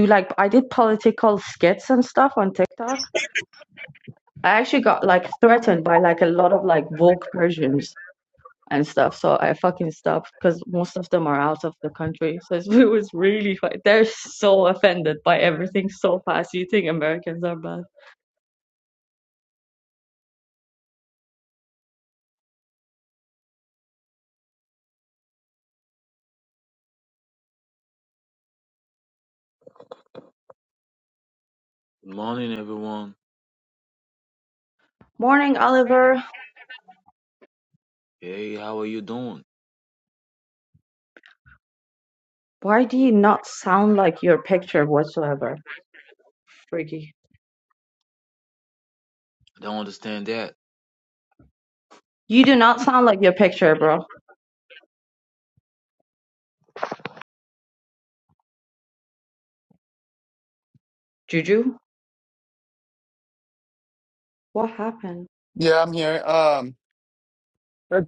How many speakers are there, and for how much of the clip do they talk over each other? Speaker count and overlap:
three, no overlap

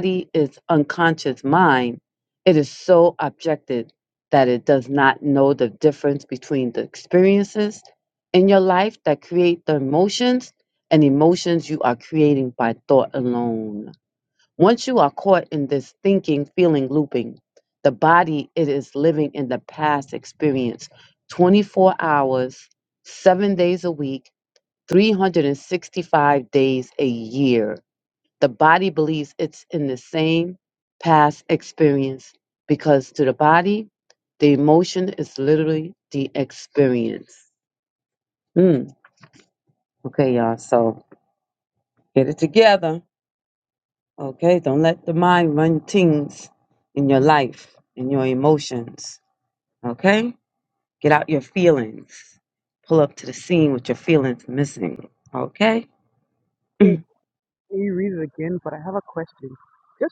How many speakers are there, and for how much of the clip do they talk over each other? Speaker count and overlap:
two, no overlap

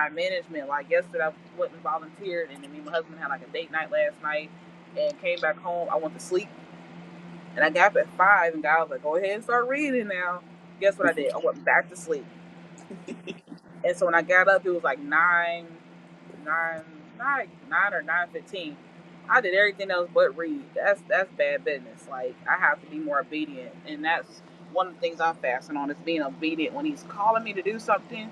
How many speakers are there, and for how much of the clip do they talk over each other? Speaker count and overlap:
one, no overlap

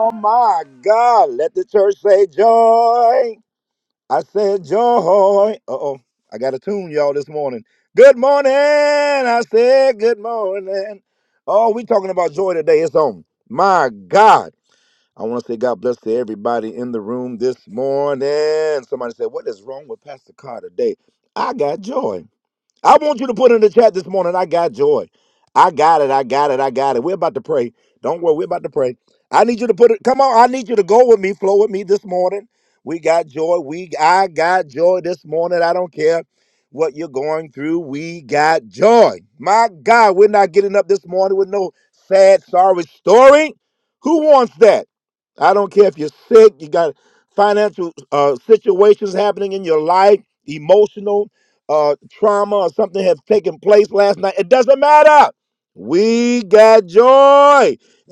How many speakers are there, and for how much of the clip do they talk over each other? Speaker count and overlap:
one, no overlap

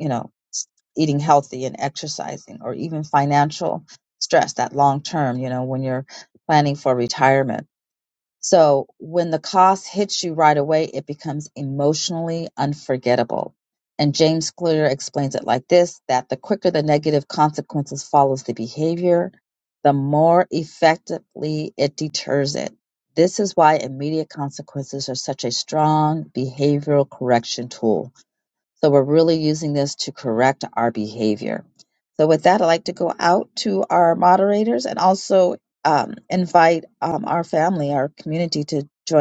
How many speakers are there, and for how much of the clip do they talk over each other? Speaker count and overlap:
one, no overlap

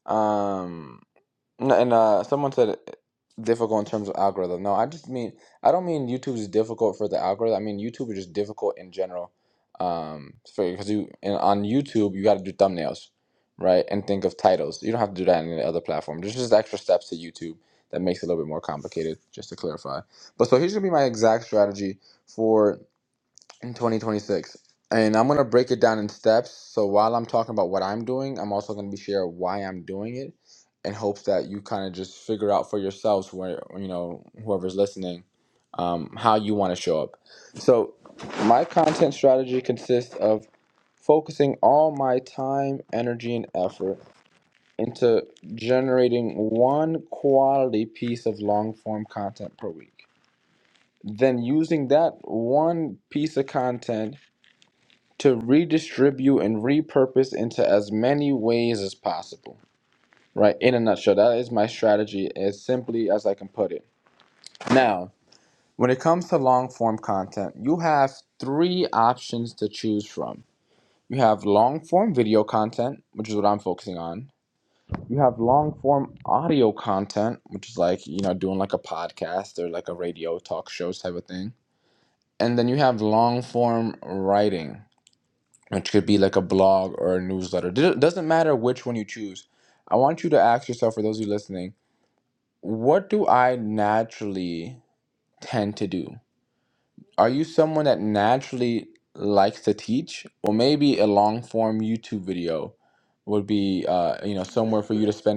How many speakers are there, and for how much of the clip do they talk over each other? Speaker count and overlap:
one, no overlap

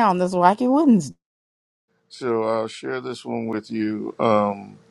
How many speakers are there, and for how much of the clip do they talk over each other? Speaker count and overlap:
two, no overlap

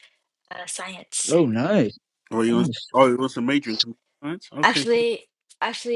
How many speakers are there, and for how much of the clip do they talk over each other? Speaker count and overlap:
three, about 15%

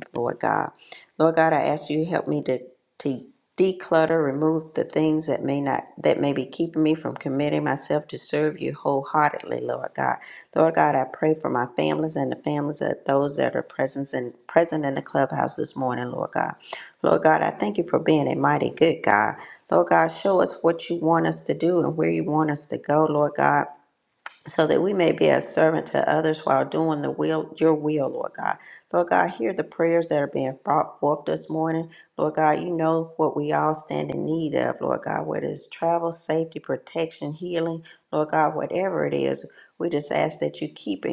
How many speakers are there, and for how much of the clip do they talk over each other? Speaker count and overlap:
one, no overlap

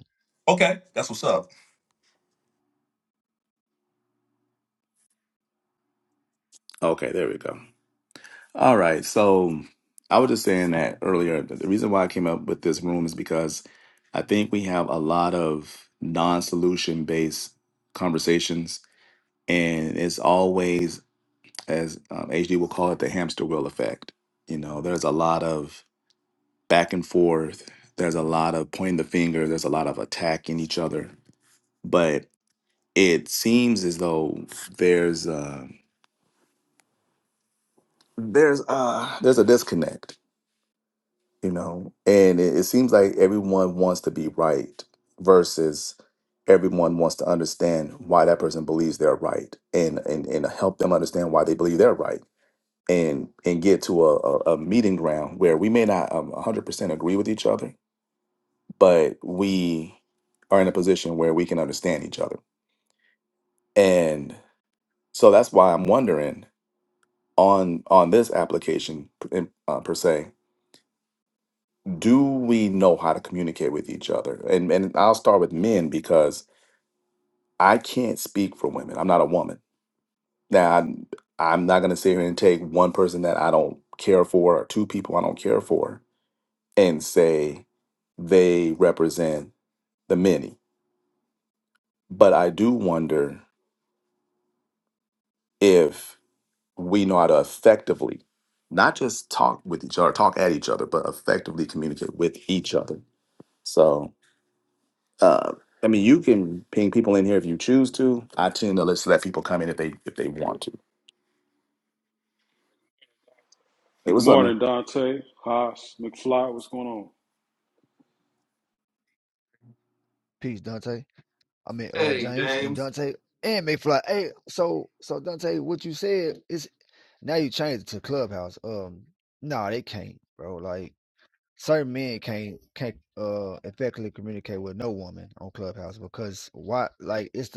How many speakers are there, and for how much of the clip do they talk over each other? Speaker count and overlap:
four, about 1%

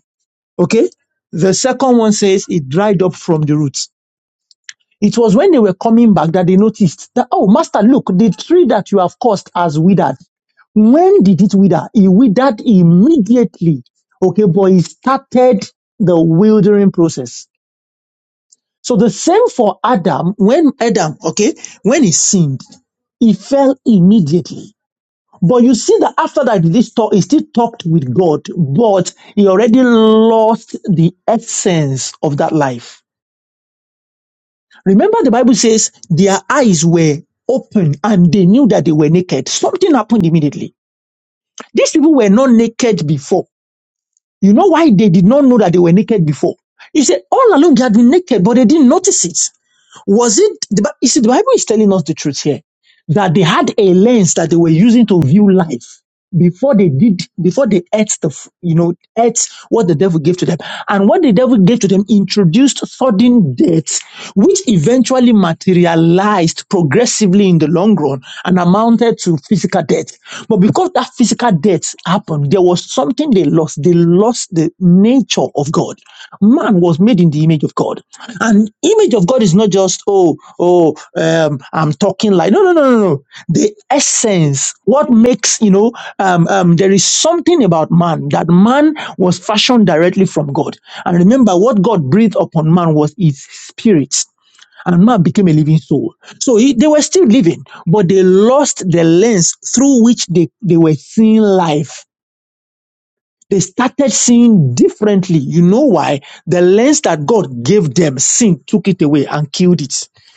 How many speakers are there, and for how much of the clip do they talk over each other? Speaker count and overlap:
one, no overlap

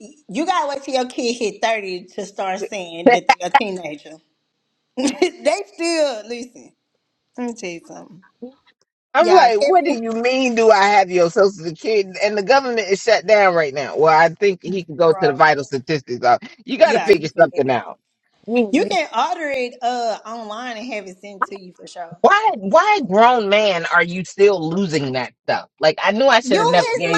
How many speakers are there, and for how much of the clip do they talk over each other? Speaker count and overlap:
two, about 11%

